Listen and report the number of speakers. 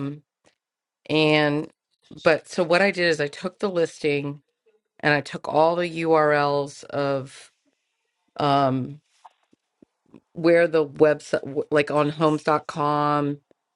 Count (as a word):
one